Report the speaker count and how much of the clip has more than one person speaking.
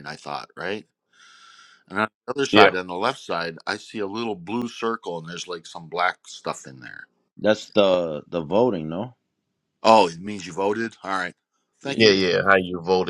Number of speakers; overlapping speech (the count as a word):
three, about 4%